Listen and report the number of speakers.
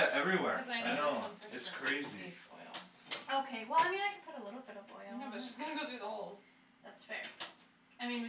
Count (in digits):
3